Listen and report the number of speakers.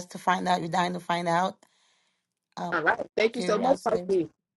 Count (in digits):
2